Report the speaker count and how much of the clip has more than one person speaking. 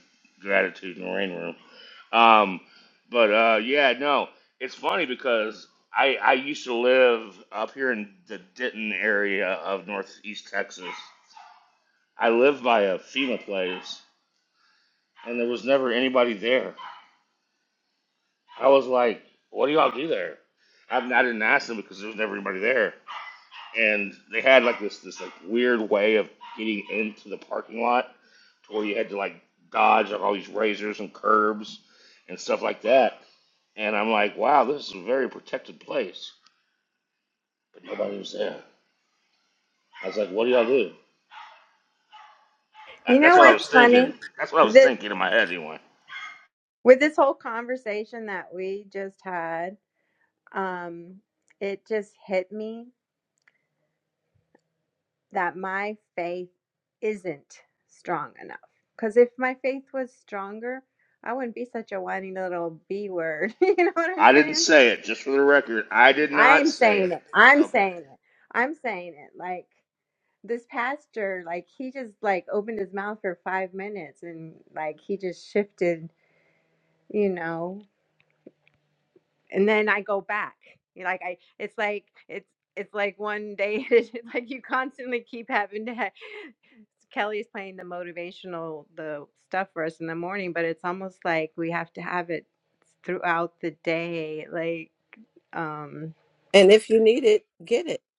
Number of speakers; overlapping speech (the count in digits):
3, about 3%